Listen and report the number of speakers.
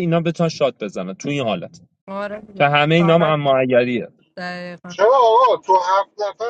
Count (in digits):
3